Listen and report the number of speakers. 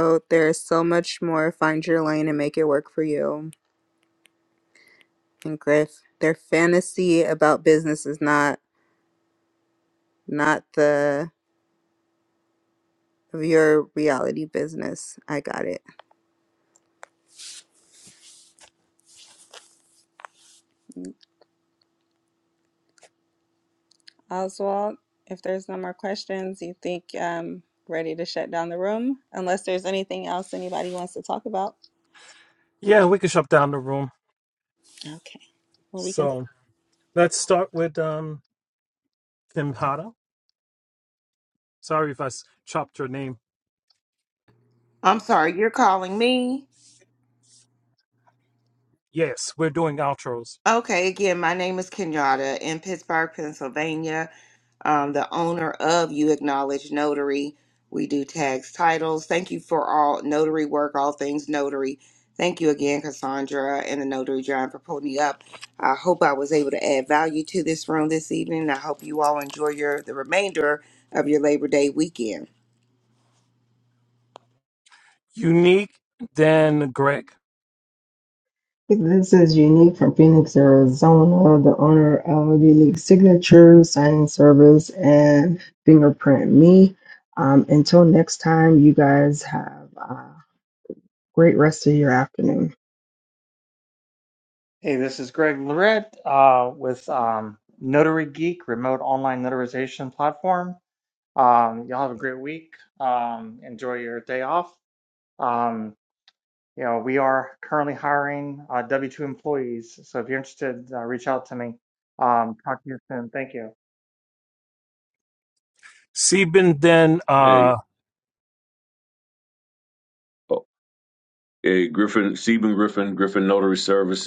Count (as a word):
six